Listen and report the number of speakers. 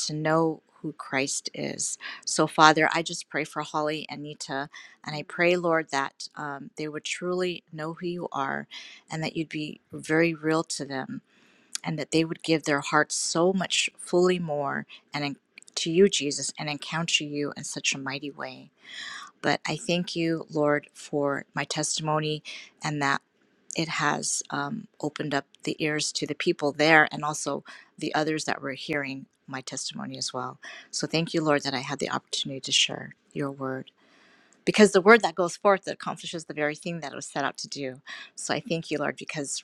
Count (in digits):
1